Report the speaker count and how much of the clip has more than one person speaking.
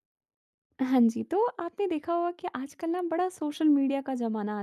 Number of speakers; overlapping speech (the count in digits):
1, no overlap